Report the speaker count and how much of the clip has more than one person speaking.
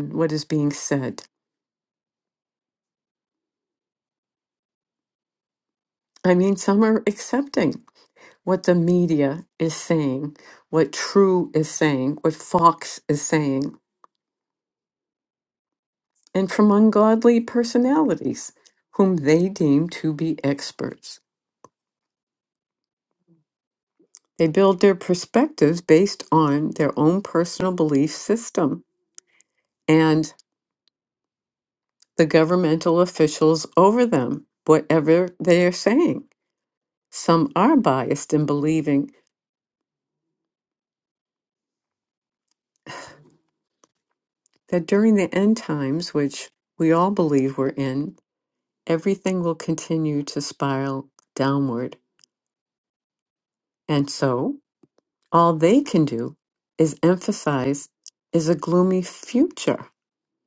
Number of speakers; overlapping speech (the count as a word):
one, no overlap